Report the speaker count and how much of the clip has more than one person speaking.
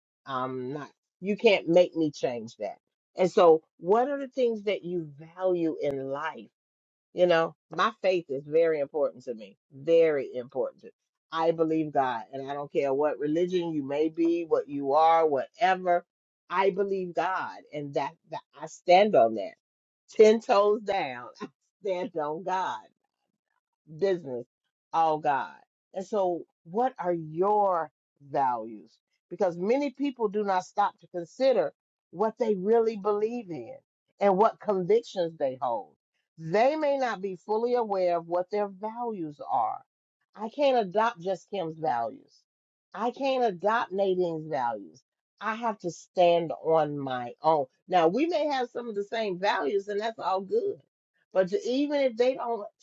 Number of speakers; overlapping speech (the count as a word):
one, no overlap